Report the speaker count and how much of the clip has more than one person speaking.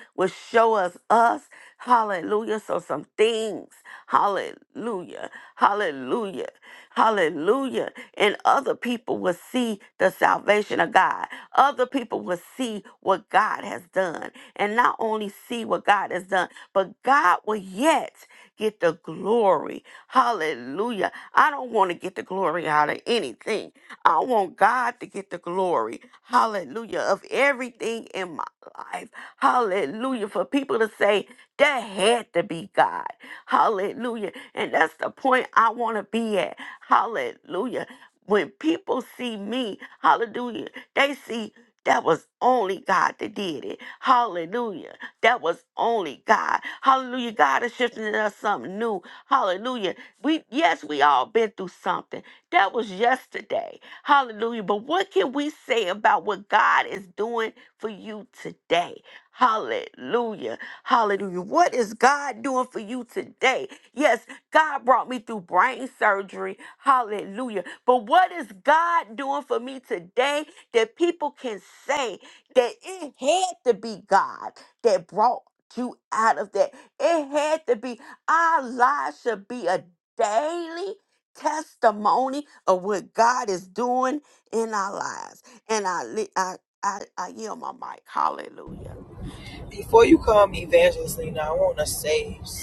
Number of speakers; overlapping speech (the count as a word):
two, no overlap